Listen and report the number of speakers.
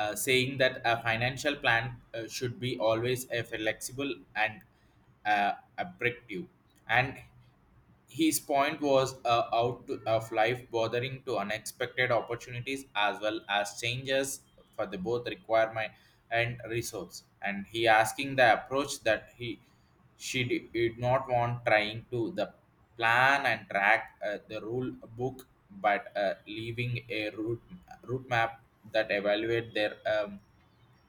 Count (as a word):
one